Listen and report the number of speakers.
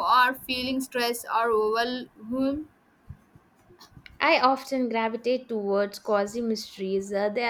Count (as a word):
two